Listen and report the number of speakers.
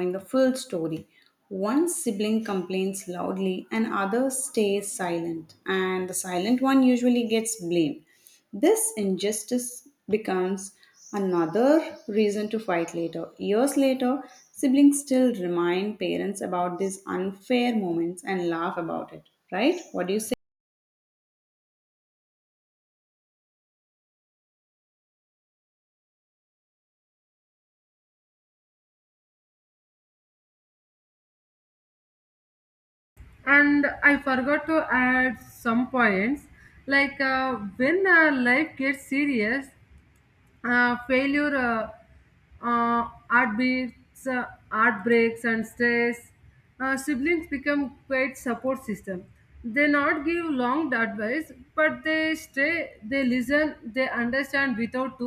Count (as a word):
two